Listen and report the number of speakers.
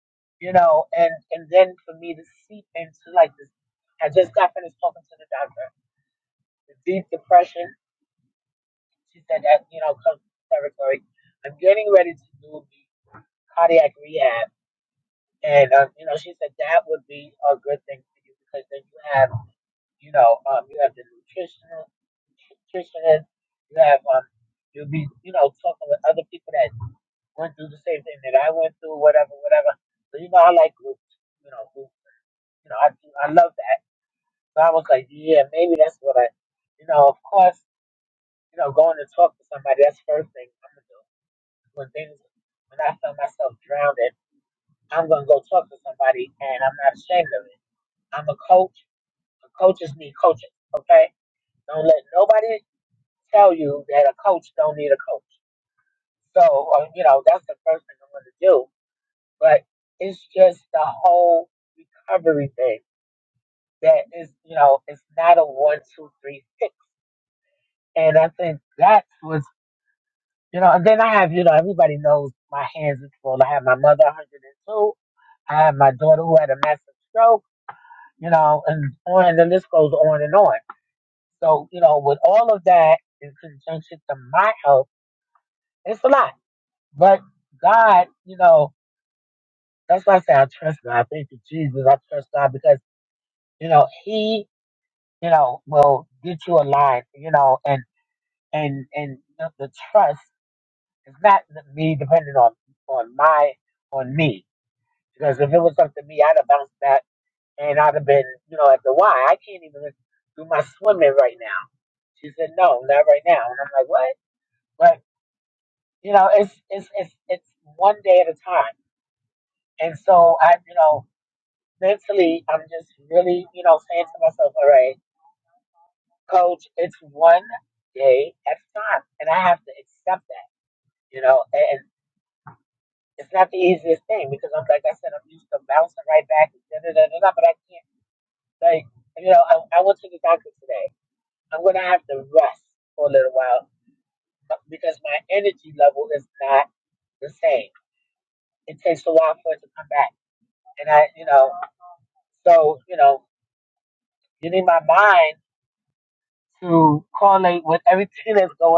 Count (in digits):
1